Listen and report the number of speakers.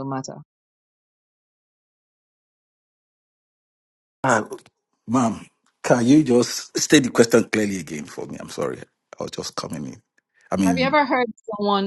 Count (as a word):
two